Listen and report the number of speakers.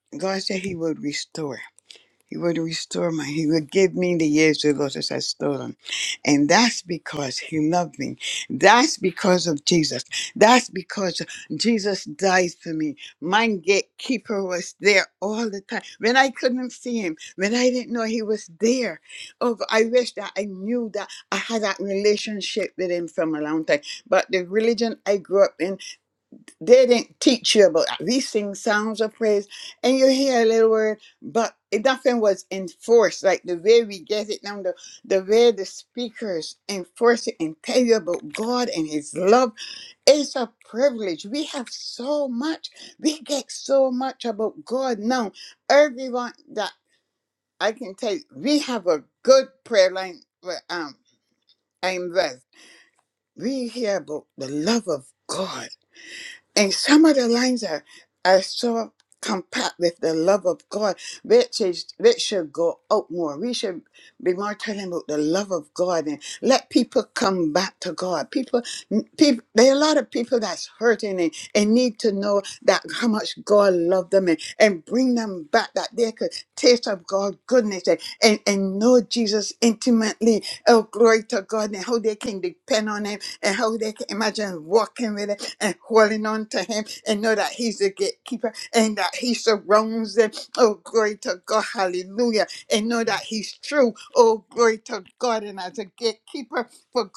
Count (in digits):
1